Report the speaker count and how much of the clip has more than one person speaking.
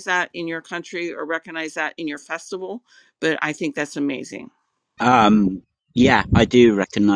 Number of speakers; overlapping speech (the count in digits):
2, no overlap